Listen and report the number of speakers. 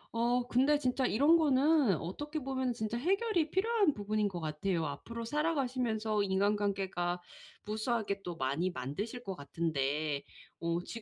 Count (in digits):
1